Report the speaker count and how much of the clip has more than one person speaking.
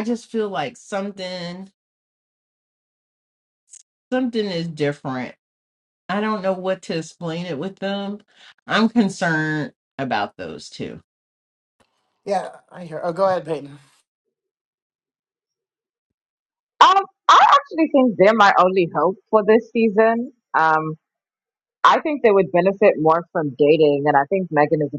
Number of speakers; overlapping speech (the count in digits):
3, no overlap